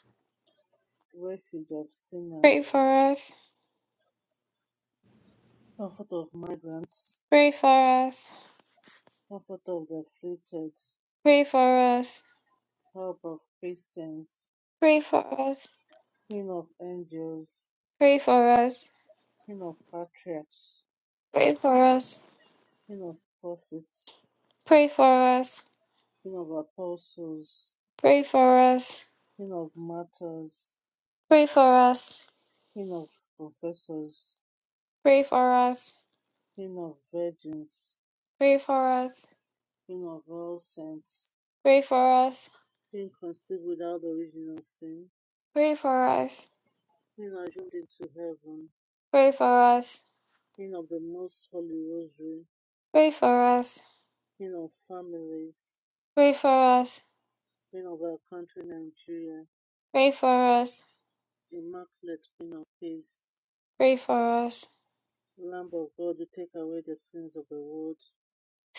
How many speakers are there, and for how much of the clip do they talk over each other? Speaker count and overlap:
2, no overlap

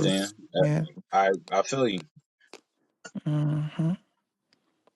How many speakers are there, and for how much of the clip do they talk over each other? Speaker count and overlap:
2, about 3%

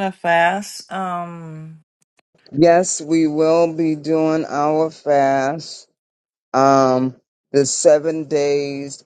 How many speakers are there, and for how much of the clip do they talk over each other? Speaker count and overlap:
2, no overlap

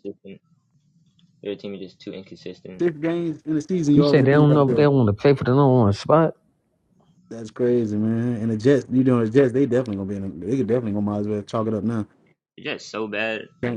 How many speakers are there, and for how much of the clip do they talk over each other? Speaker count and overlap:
3, about 8%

